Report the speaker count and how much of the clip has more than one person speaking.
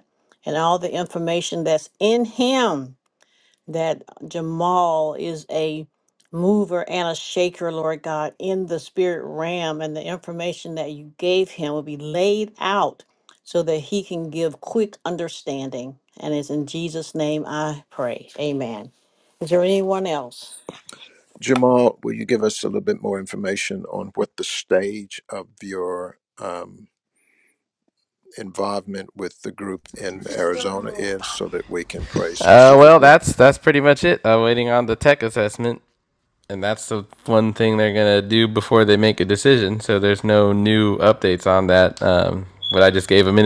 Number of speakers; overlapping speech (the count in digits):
3, about 2%